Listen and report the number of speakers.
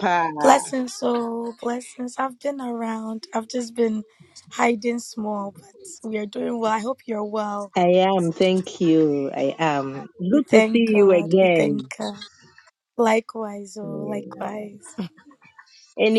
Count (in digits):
2